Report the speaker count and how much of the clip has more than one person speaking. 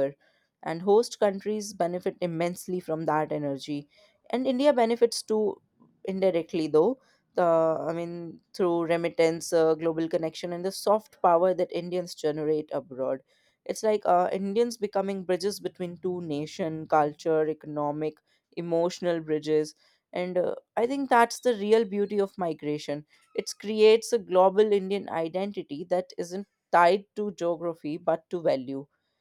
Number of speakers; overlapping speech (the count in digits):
1, no overlap